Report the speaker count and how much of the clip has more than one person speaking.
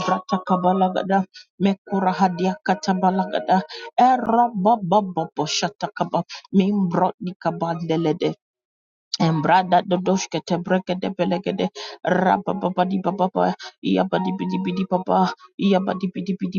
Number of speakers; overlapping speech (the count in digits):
1, no overlap